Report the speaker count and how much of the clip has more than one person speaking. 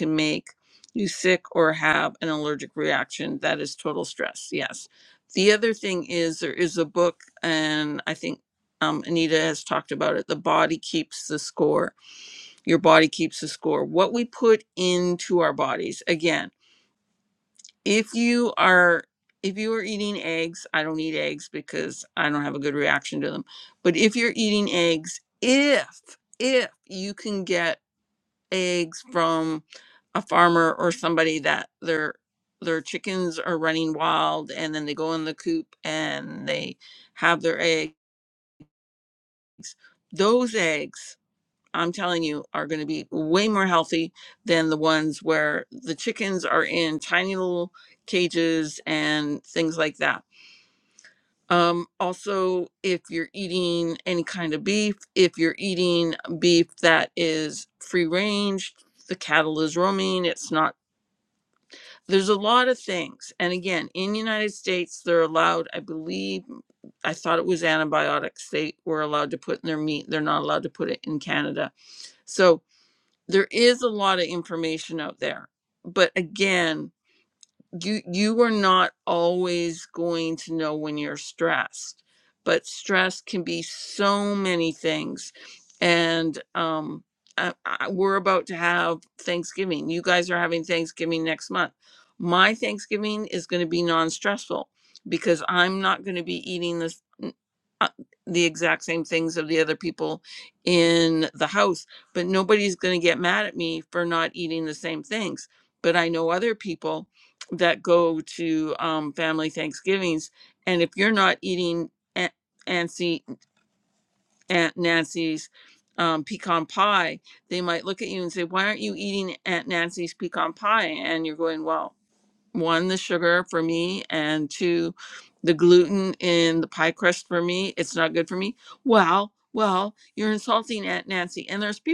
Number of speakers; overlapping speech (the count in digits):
1, no overlap